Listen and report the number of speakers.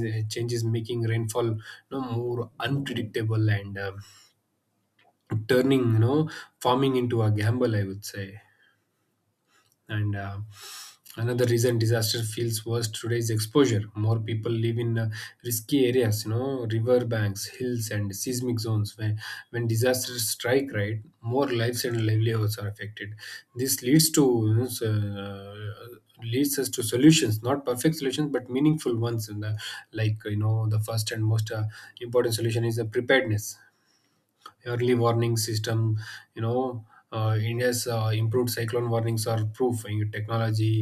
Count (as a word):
one